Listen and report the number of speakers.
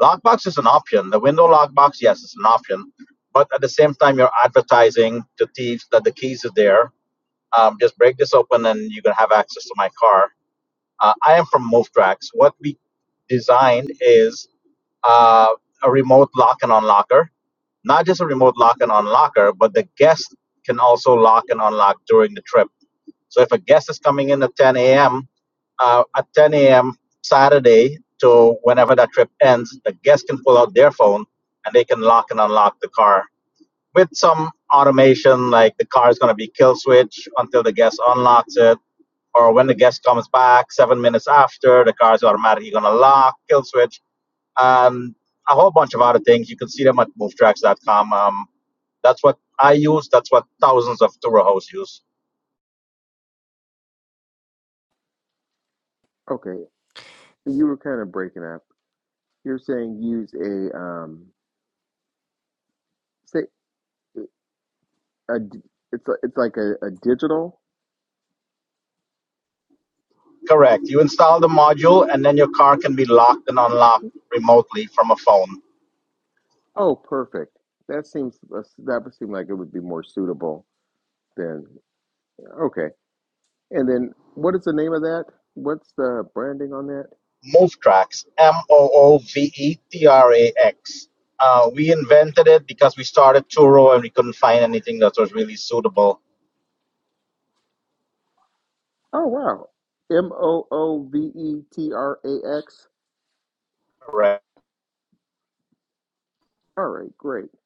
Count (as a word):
two